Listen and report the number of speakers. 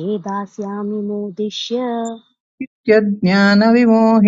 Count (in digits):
2